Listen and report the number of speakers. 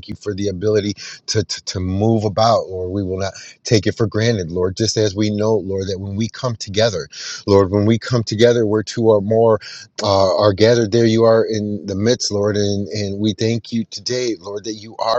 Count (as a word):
one